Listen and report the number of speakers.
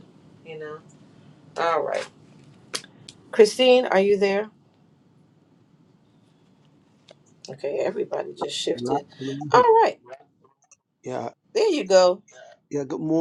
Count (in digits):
2